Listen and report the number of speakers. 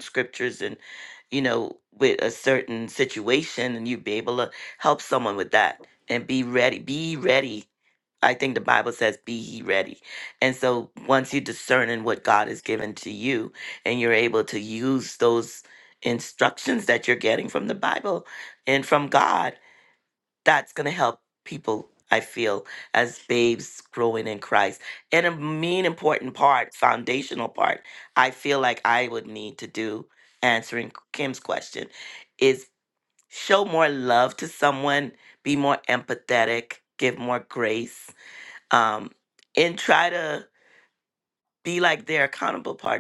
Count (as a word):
one